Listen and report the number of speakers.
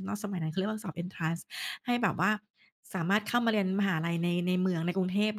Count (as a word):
one